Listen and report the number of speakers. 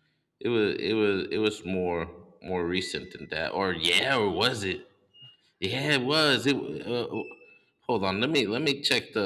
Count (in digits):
1